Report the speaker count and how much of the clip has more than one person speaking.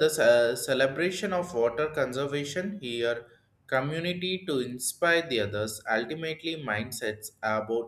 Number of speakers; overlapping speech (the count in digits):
1, no overlap